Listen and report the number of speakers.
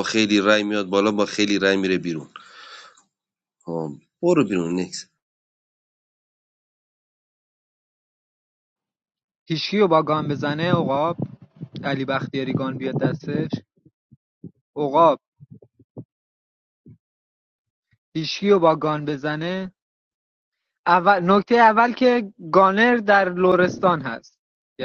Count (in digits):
2